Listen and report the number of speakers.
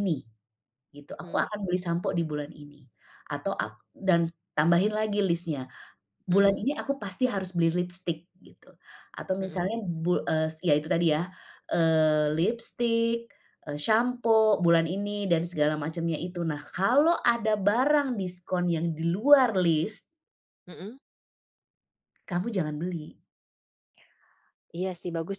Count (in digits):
2